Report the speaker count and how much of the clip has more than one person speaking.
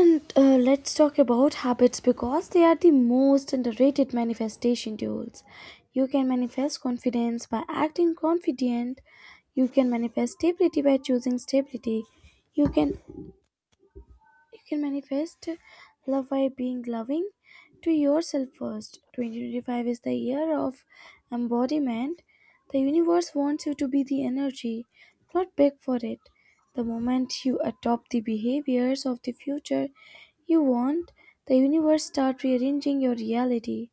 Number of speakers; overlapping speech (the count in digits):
1, no overlap